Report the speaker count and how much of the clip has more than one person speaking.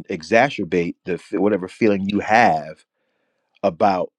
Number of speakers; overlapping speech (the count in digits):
1, no overlap